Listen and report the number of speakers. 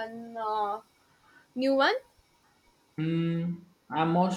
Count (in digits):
2